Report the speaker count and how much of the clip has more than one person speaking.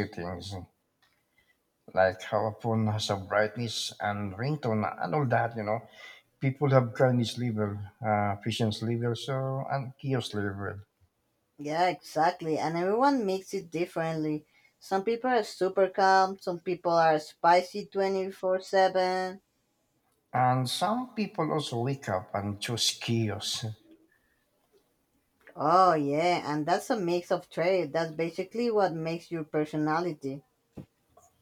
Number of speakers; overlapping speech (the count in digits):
2, no overlap